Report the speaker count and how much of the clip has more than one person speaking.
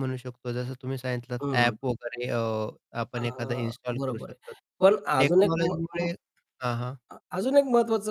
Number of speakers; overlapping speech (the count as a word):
two, about 22%